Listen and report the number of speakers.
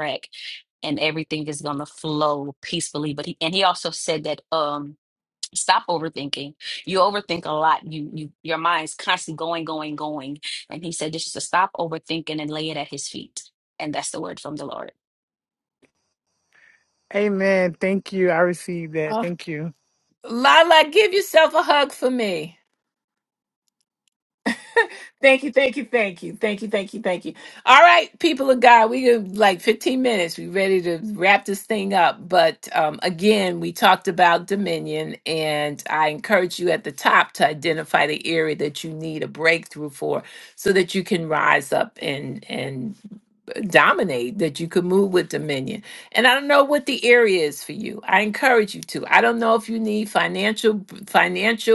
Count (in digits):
3